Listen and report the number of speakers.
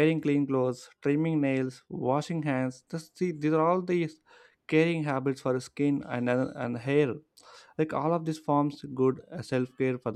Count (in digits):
1